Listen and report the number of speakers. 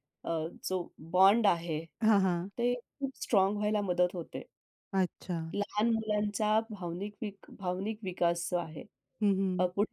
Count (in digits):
2